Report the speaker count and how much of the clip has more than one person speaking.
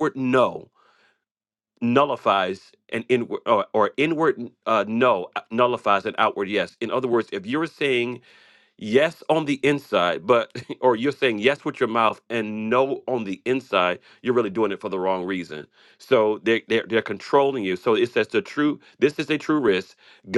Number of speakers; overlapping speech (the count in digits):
1, no overlap